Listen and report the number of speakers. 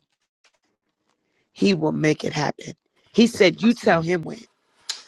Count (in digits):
1